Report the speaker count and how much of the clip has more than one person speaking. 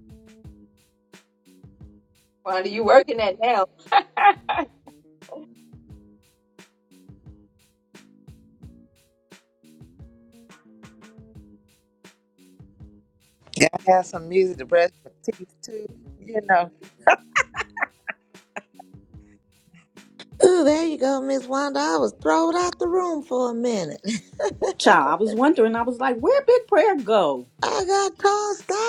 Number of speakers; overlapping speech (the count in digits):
4, no overlap